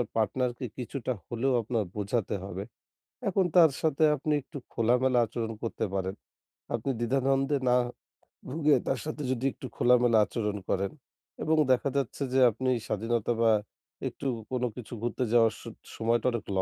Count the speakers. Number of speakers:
one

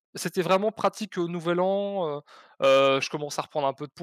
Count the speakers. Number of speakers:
one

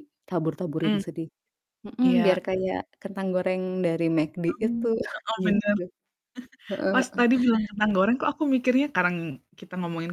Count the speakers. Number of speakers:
two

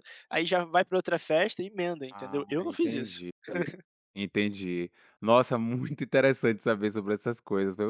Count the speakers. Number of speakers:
two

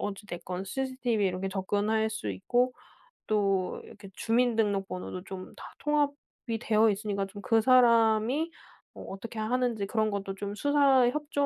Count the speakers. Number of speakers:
one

